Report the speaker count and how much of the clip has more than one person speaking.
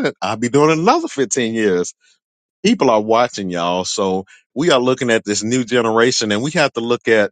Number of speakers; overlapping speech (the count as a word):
one, no overlap